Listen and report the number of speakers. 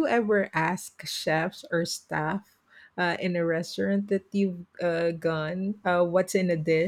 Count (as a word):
one